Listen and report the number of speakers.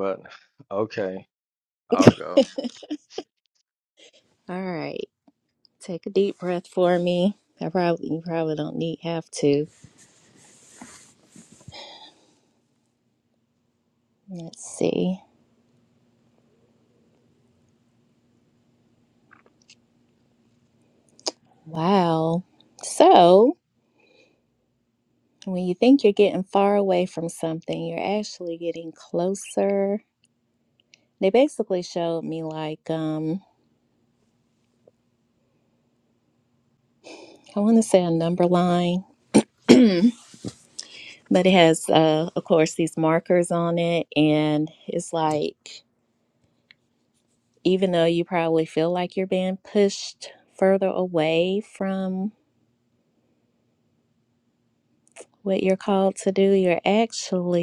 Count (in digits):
2